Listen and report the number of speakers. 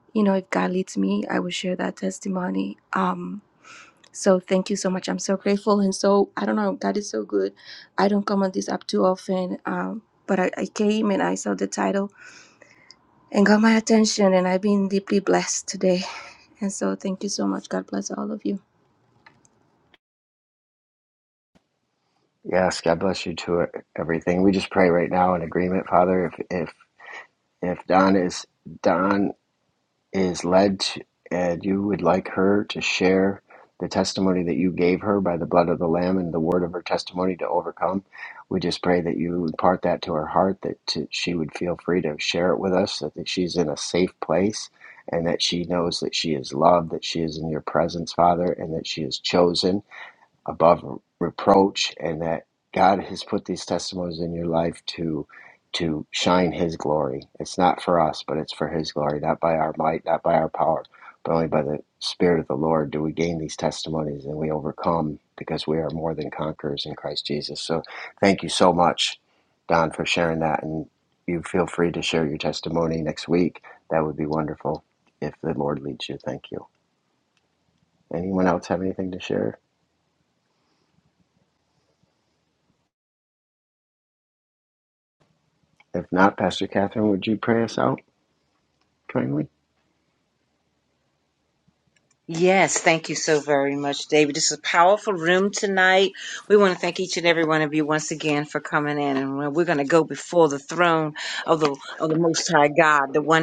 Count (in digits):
3